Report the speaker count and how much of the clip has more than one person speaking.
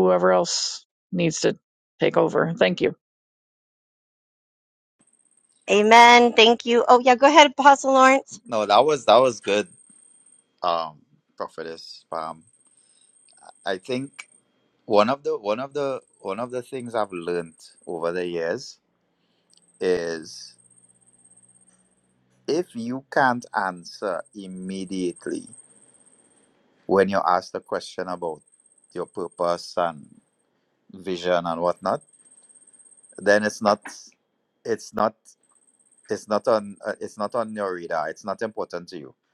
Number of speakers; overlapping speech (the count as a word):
three, no overlap